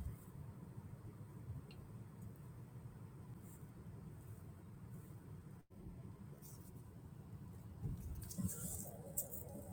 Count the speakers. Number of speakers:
0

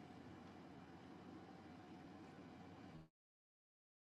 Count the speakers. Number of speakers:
0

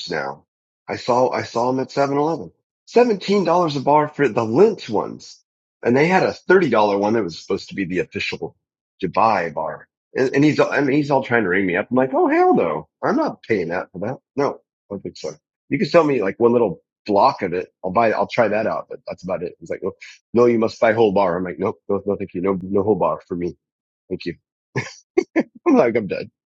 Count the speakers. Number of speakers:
1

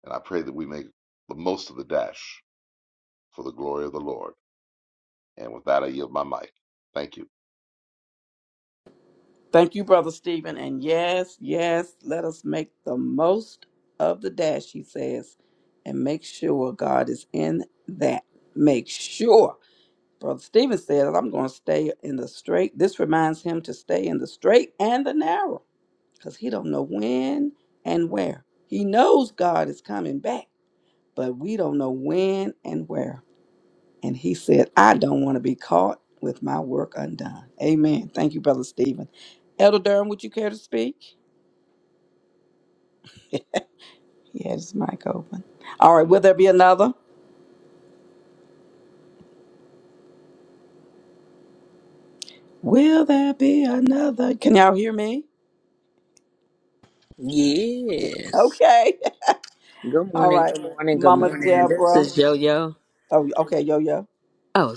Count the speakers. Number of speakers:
3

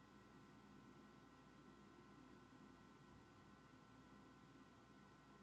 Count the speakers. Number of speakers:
0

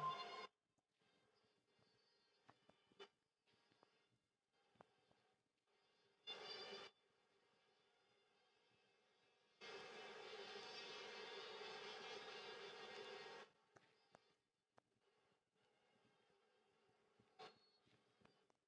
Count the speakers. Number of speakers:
0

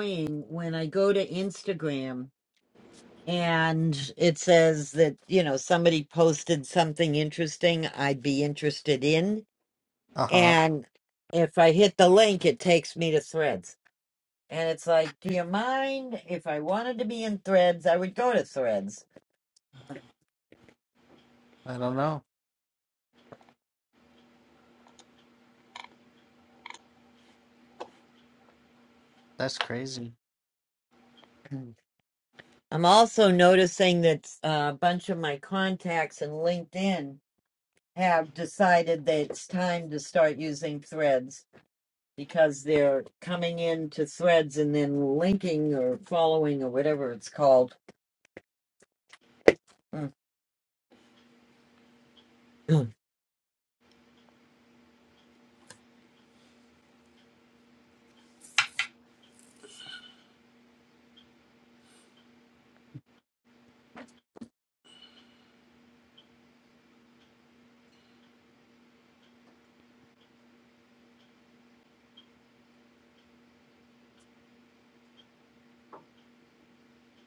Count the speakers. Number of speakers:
2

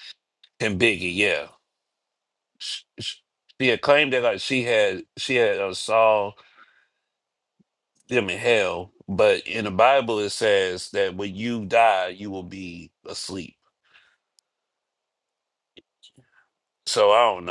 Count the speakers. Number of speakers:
1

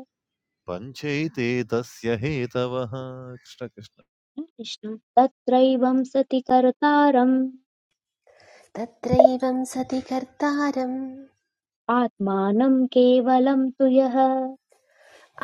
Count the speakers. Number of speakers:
3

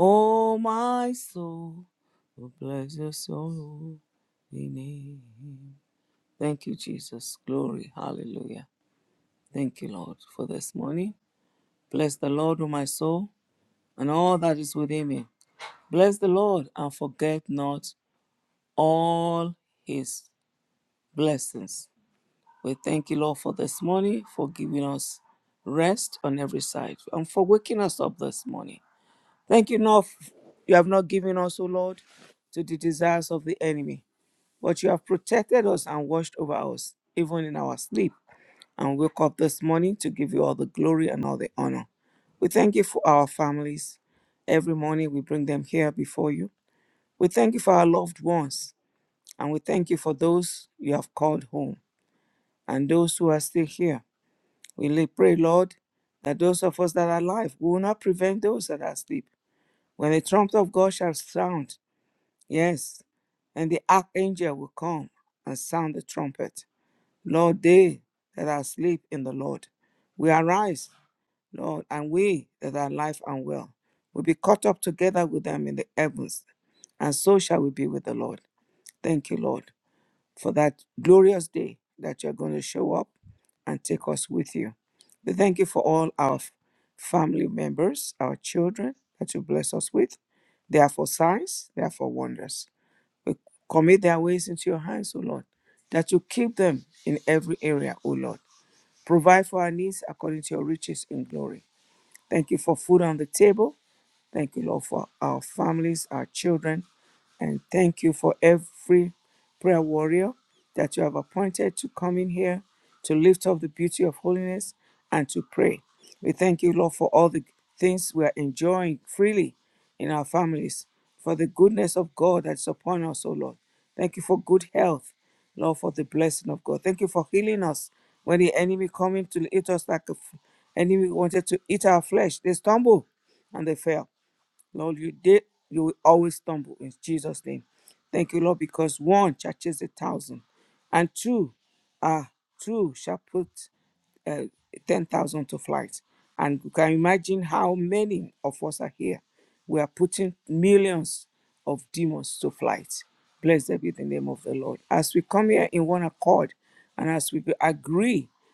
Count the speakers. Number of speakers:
1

